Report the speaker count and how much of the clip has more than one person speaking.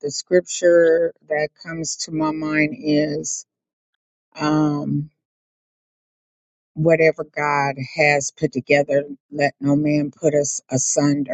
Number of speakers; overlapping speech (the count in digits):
1, no overlap